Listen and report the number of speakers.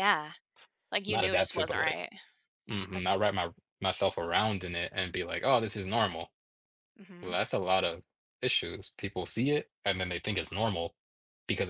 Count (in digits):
2